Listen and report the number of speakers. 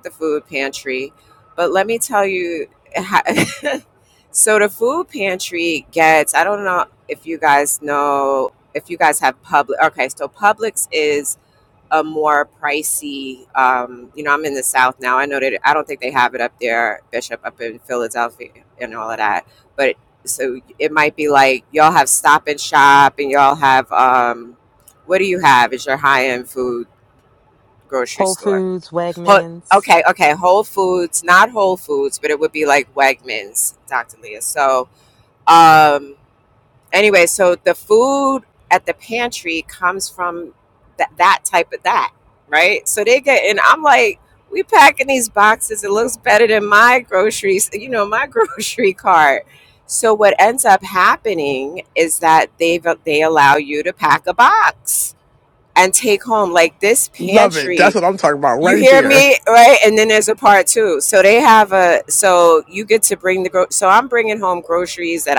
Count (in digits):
3